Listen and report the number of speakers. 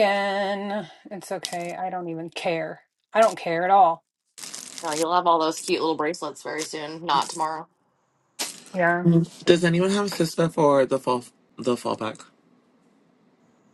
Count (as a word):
three